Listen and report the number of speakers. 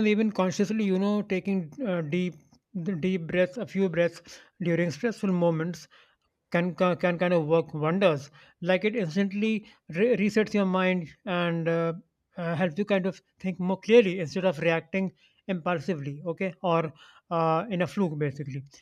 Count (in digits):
1